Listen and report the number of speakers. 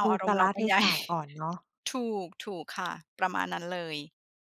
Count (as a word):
two